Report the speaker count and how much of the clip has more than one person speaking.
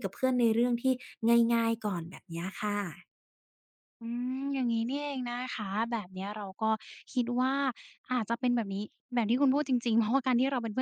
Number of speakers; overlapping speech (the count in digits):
2, no overlap